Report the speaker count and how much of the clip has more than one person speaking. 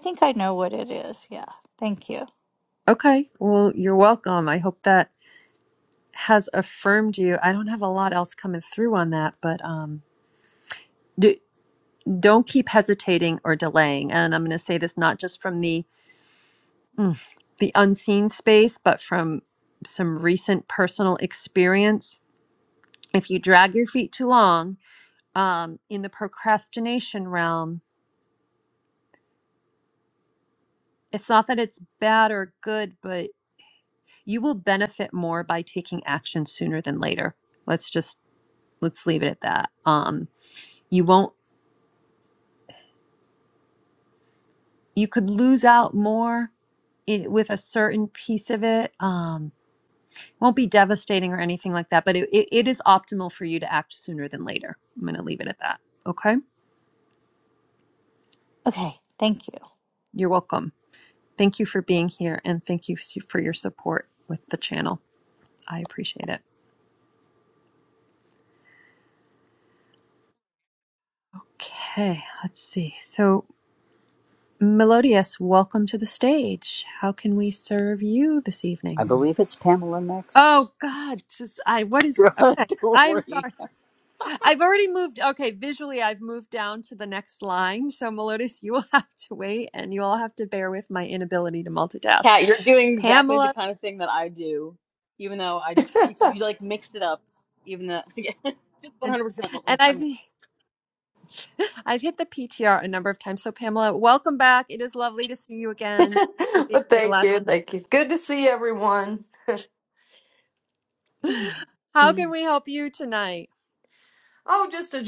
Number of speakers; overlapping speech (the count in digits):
5, about 3%